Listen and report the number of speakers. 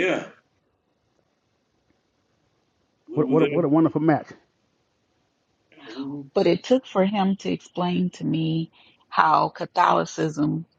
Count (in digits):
3